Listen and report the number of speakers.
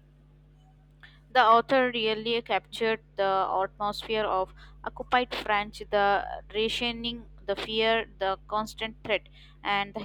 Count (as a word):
one